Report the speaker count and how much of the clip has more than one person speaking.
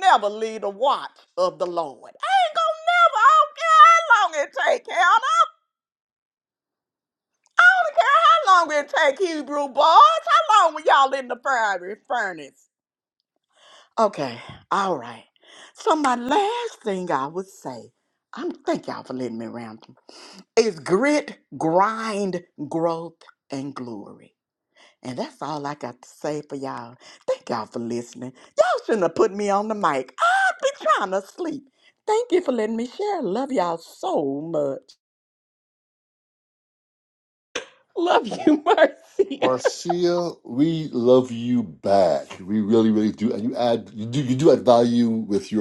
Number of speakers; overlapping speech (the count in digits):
3, under 1%